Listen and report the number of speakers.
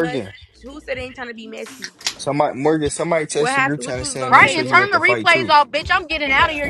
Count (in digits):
3